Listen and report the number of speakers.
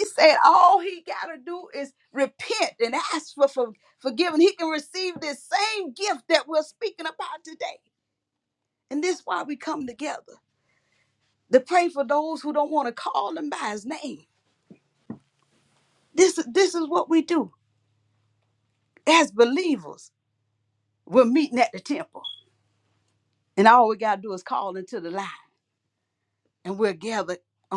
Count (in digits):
1